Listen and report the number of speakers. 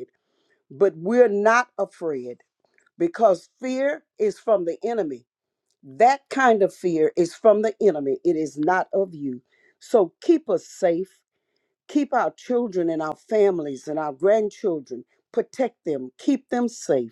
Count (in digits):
1